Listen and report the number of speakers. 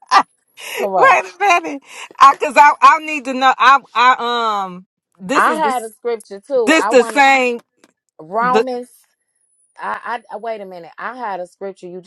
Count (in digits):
2